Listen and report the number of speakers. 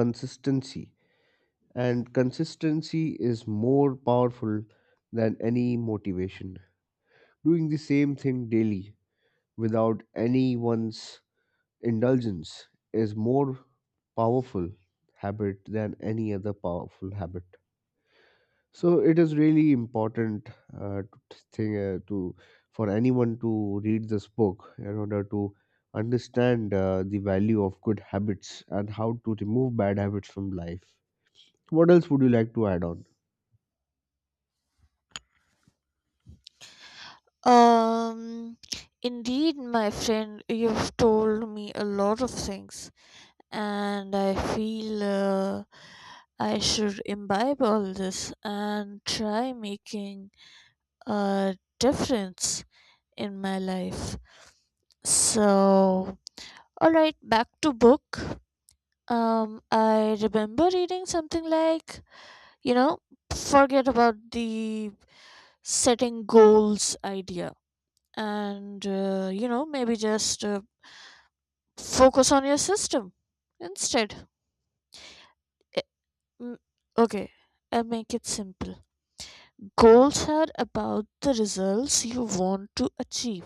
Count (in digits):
2